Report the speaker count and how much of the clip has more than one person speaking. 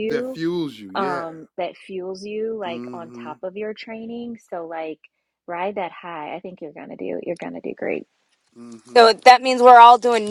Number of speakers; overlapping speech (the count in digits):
3, about 15%